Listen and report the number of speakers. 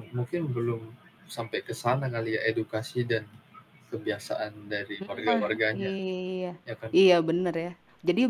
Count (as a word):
two